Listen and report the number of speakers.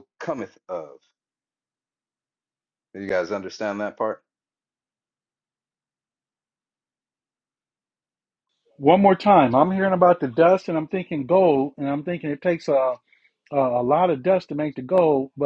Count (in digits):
2